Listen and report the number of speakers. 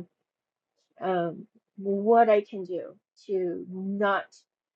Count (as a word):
one